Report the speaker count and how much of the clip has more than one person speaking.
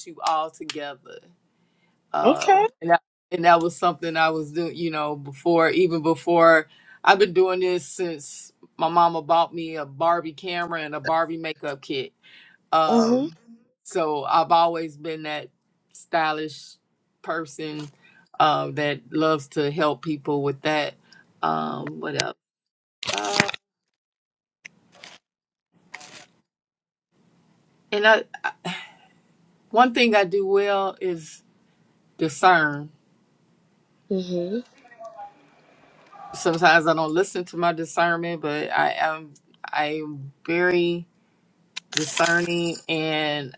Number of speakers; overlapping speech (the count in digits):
2, about 2%